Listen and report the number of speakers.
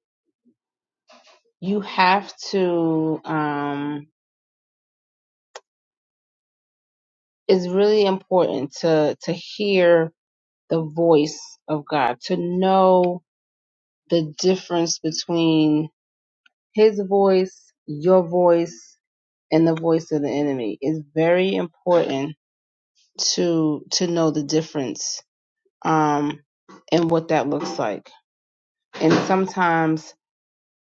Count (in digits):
1